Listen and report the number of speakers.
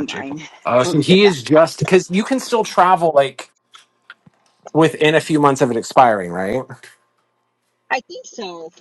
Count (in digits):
2